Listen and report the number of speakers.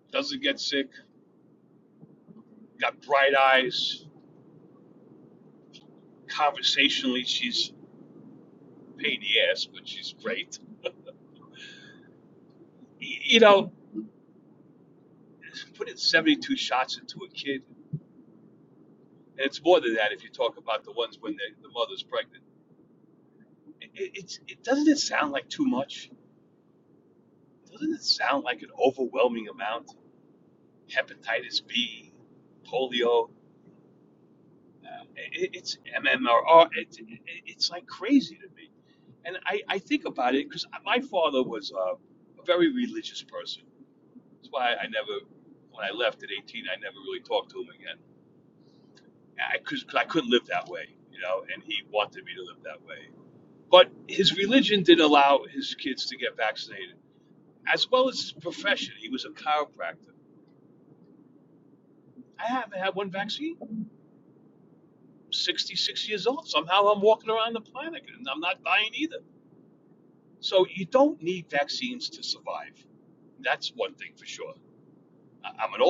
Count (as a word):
one